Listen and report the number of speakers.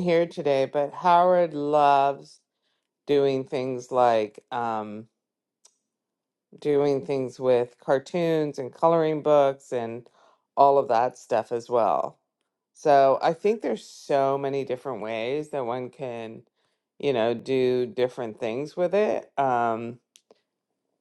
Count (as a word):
one